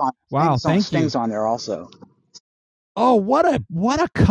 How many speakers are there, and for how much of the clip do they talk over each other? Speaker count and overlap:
2, about 18%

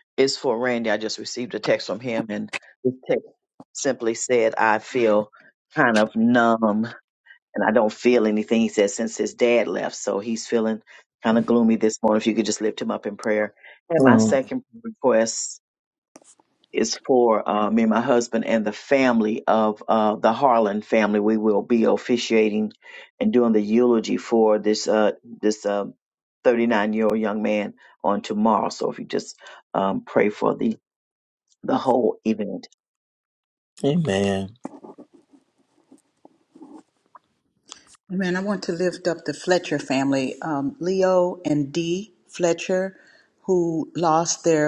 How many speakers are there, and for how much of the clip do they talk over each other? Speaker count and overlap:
3, about 1%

